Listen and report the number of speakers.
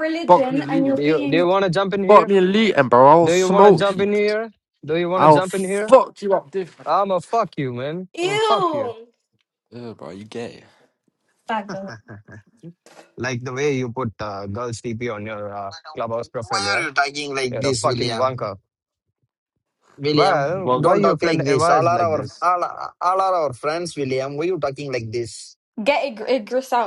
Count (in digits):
4